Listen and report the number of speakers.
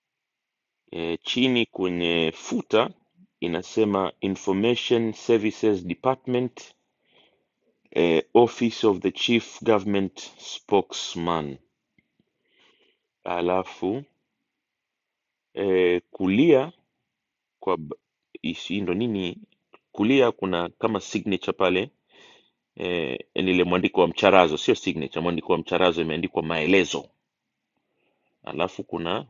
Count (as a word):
one